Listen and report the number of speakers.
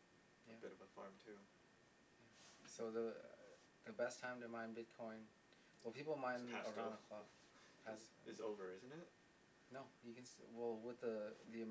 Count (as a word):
two